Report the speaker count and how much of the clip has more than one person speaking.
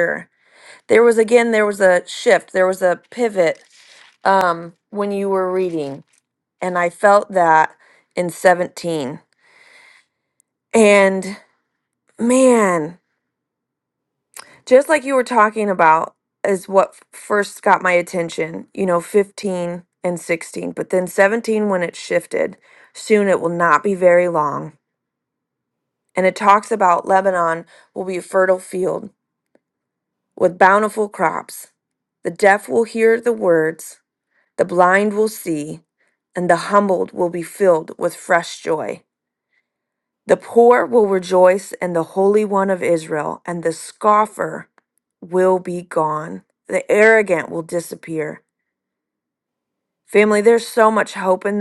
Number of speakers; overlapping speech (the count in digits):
1, no overlap